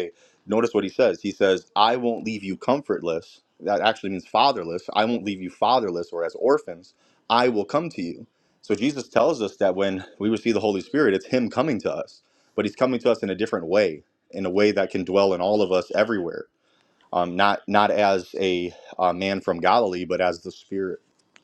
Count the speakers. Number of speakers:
one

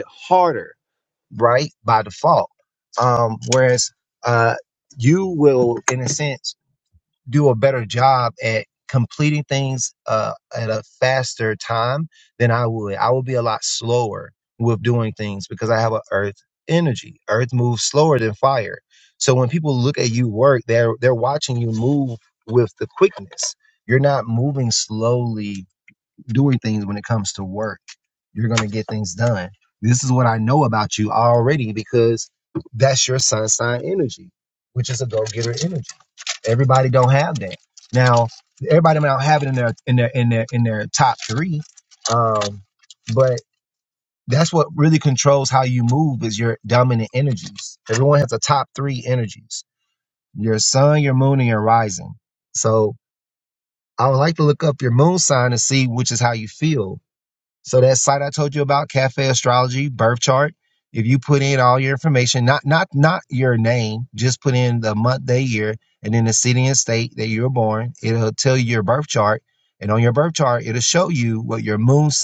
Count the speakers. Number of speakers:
one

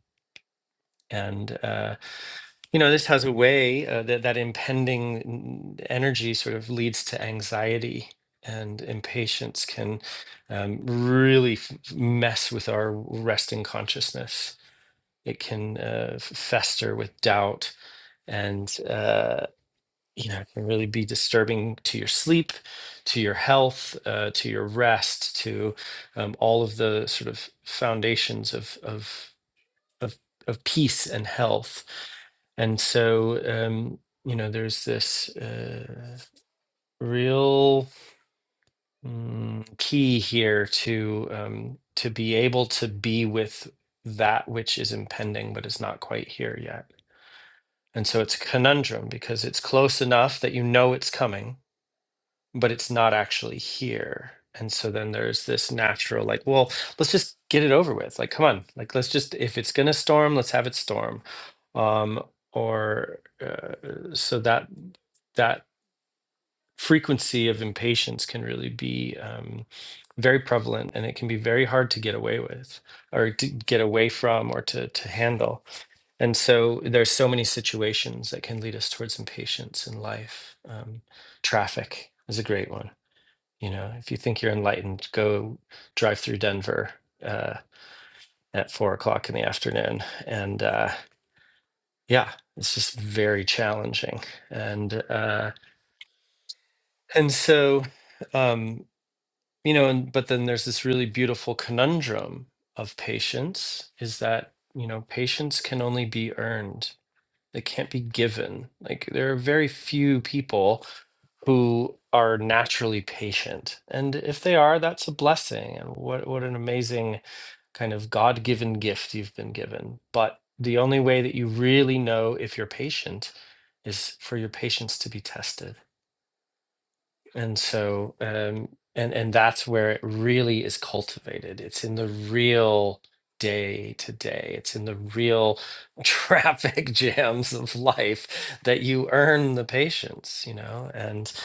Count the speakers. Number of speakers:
one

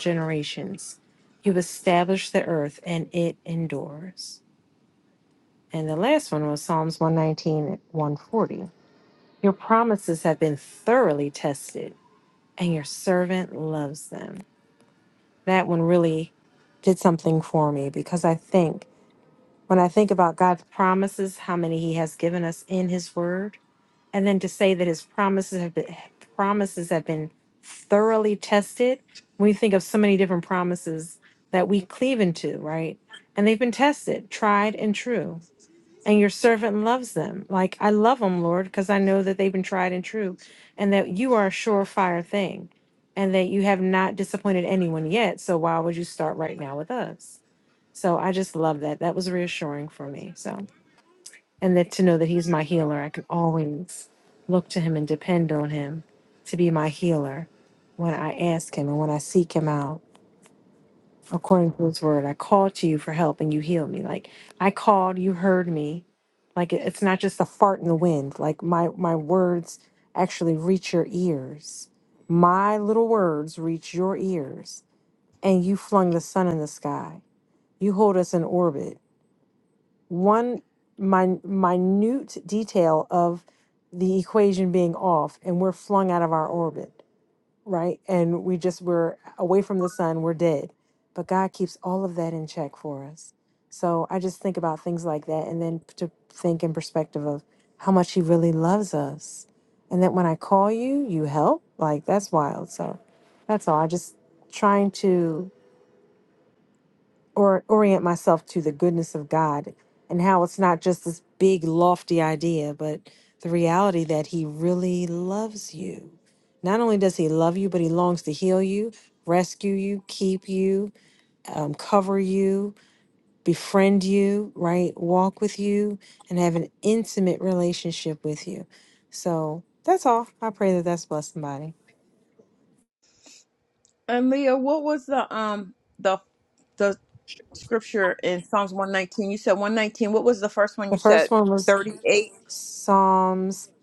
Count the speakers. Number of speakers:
two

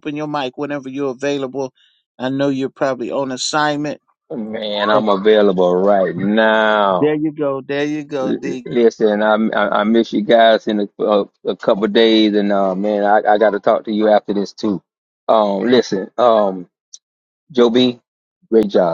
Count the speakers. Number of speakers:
two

